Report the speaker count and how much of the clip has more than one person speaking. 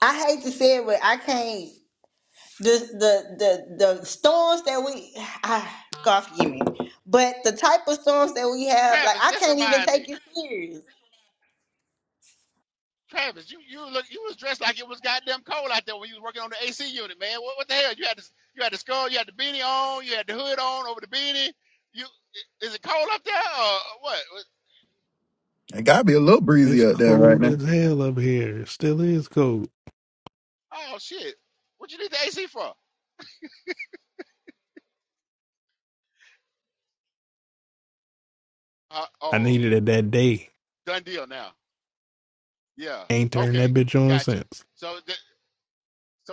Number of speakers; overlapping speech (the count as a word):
four, about 7%